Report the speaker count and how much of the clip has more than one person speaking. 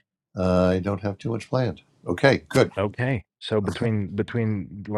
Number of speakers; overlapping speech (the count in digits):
2, no overlap